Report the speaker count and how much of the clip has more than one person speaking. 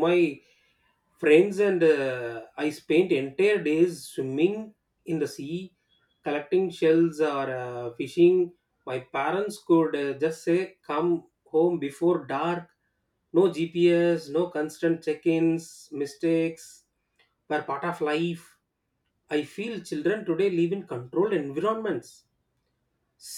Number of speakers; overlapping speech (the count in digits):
1, no overlap